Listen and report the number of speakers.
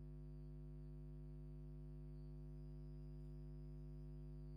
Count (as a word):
zero